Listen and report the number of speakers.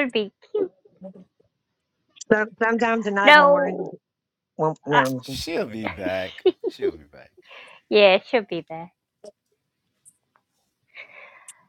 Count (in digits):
3